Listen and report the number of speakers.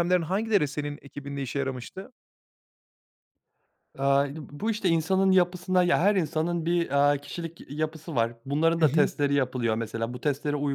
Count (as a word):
two